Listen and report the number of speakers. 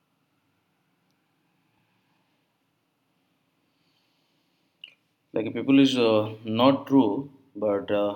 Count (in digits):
1